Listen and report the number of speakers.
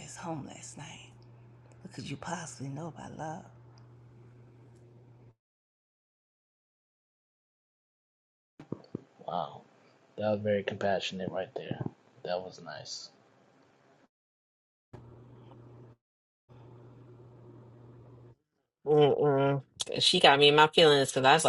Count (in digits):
3